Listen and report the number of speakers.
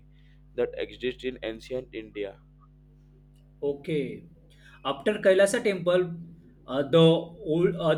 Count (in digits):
2